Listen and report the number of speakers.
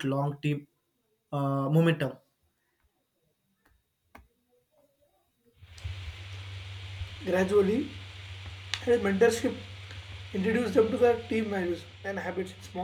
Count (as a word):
two